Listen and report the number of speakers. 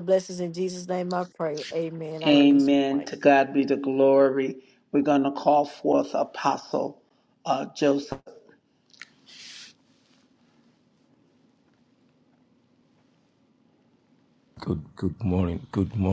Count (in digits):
3